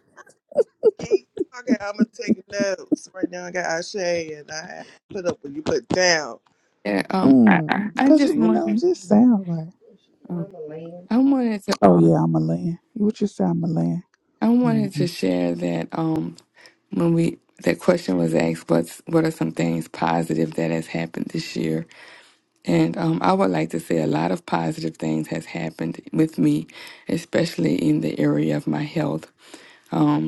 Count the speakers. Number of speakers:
three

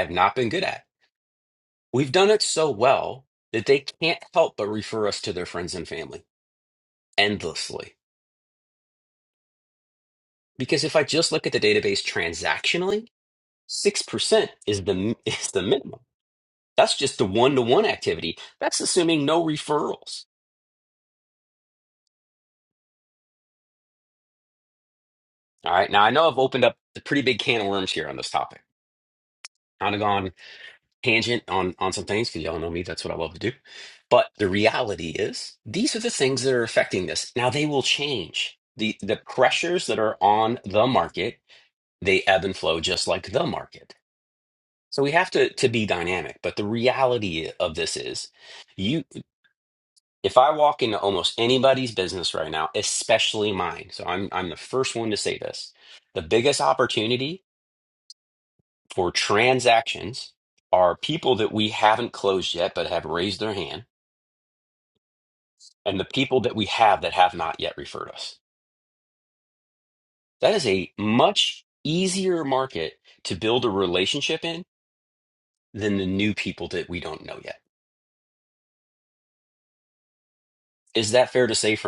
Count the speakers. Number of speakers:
one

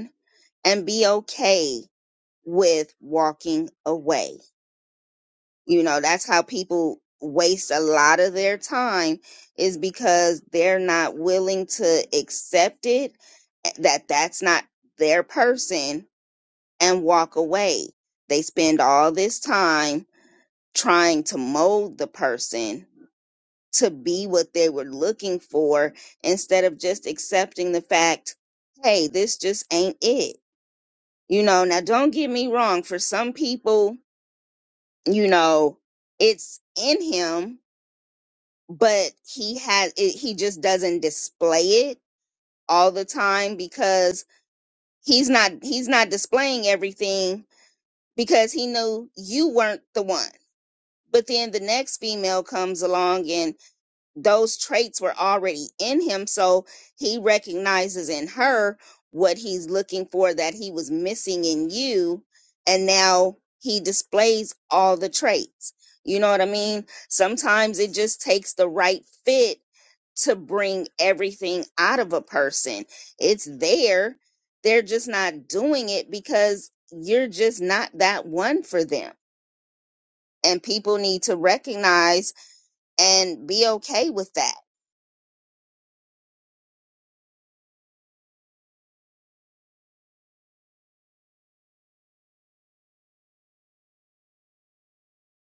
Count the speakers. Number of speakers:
one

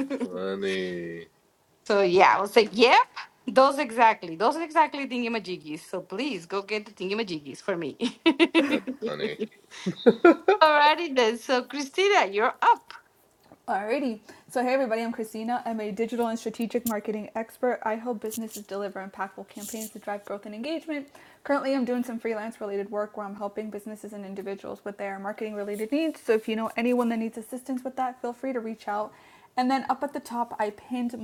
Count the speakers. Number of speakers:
three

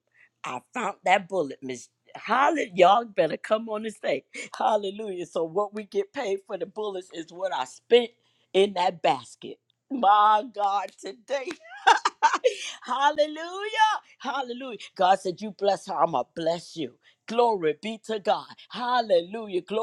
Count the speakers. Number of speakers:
one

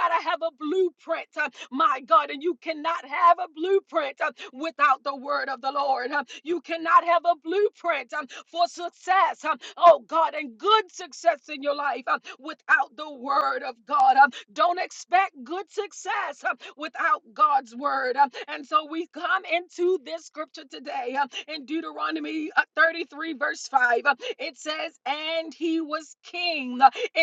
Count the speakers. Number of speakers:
one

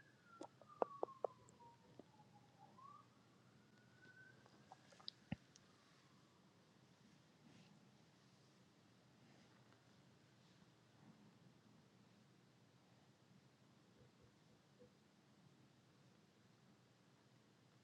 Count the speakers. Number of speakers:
zero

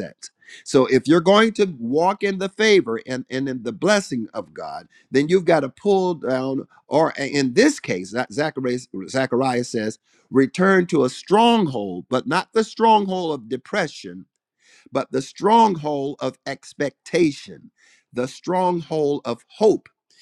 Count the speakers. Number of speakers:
one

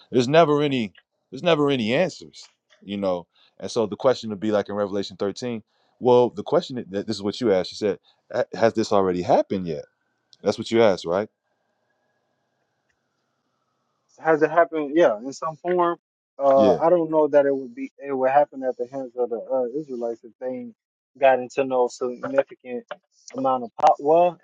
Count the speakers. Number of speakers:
two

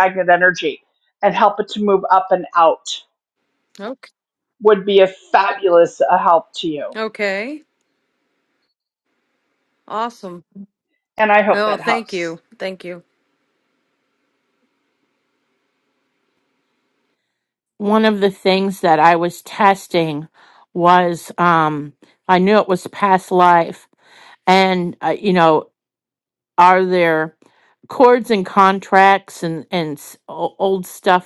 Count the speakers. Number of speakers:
three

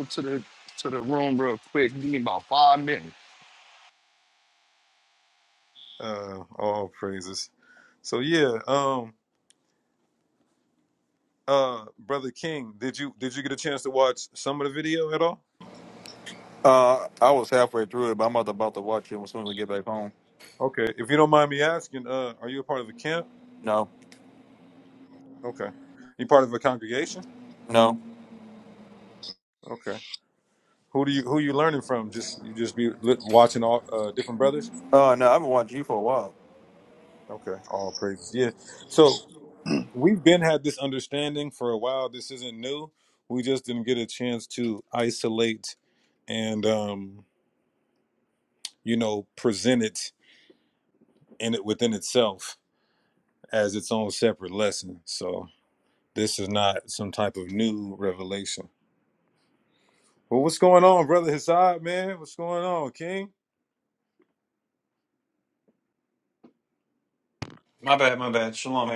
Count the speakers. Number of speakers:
four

